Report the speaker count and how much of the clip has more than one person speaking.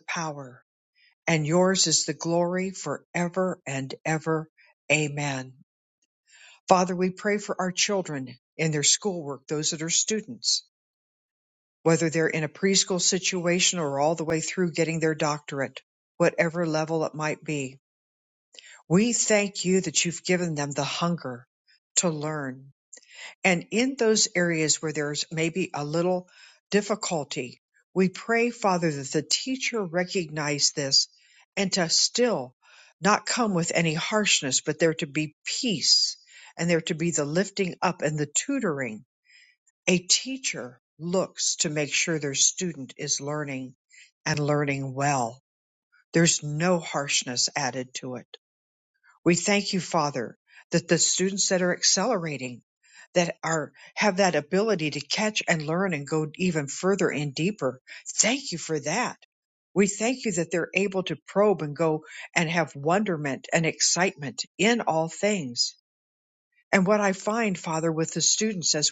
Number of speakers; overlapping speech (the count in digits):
1, no overlap